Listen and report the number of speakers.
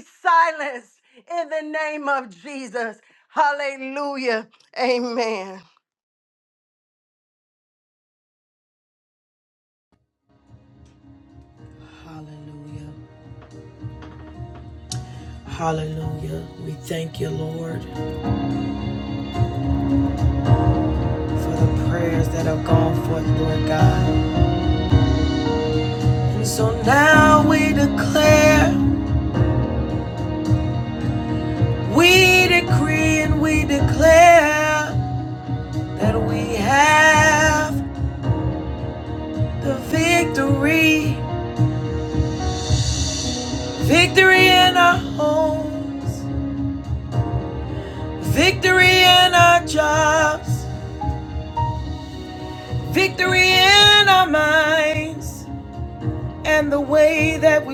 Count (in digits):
2